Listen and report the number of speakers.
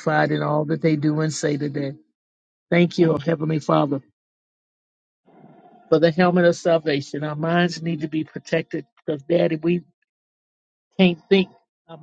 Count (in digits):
1